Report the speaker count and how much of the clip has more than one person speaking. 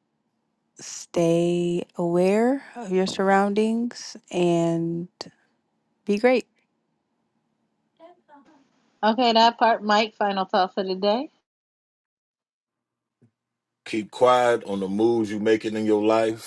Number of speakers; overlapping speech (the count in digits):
3, no overlap